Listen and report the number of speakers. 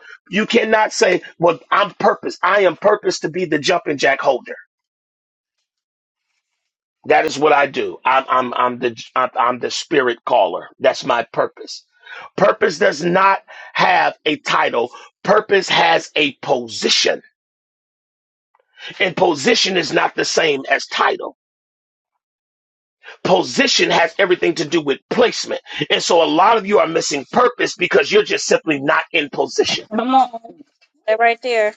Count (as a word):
two